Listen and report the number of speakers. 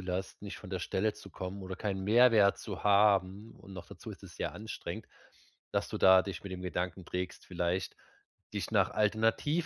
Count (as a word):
one